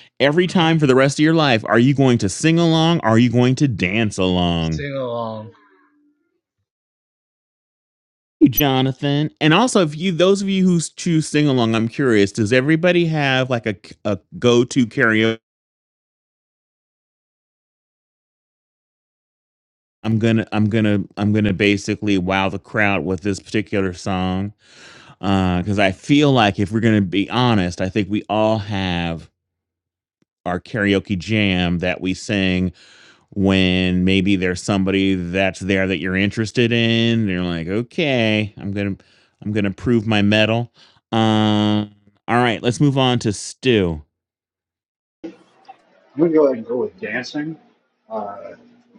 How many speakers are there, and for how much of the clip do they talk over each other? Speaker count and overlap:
three, about 1%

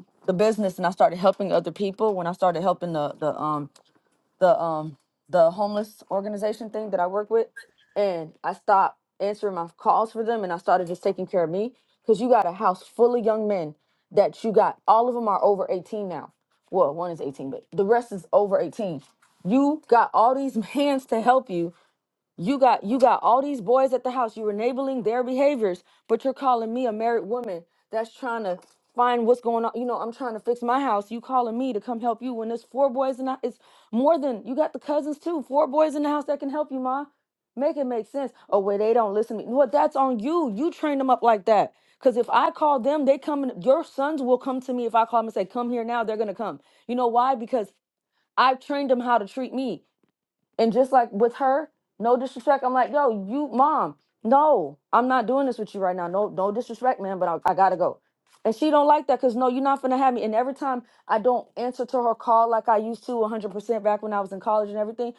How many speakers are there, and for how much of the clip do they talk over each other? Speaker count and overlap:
one, no overlap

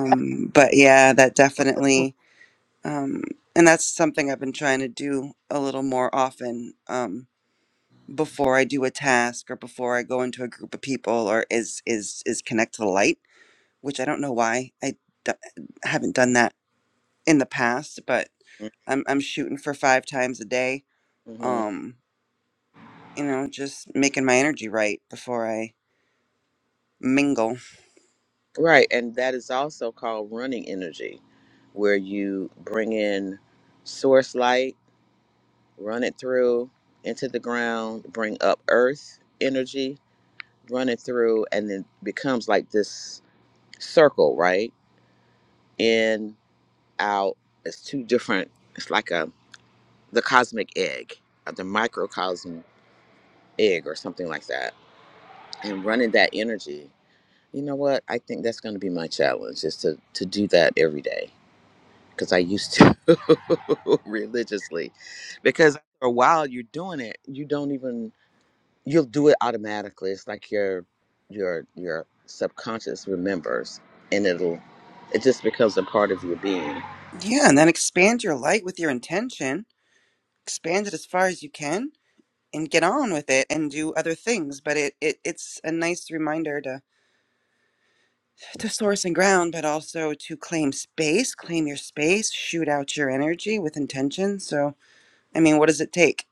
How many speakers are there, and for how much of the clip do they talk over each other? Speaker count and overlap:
two, under 1%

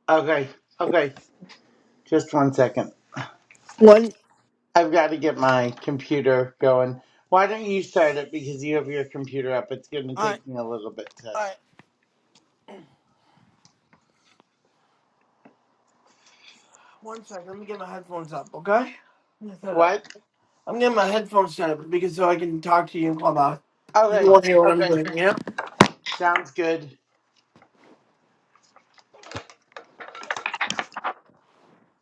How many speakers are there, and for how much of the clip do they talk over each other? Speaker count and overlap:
two, about 4%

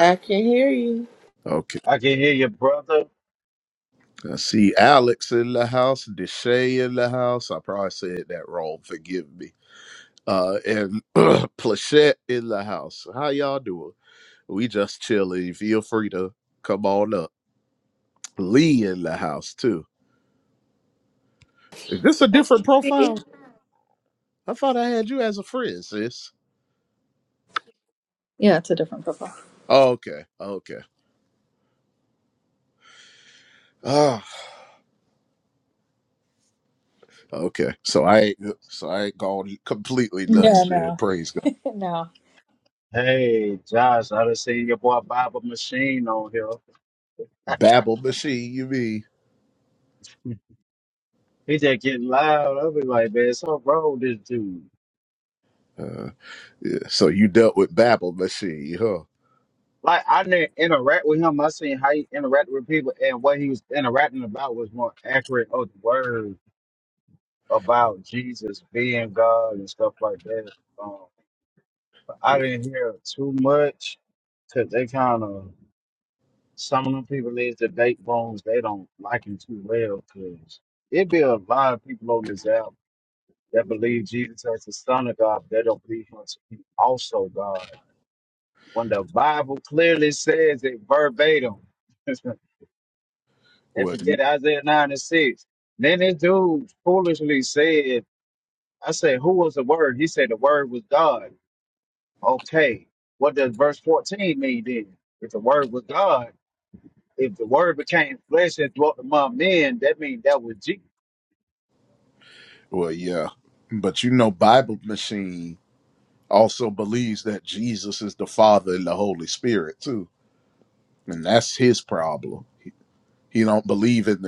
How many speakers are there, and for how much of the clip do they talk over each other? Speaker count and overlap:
four, about 1%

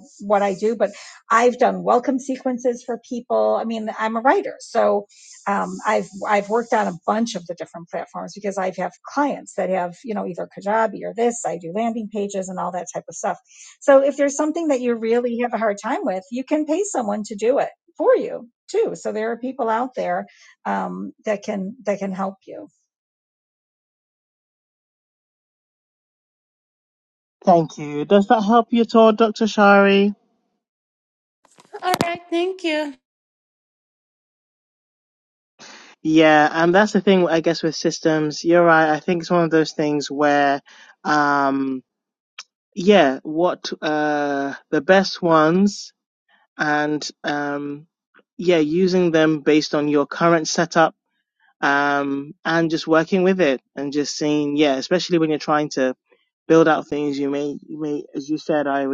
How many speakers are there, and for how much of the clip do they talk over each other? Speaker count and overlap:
three, no overlap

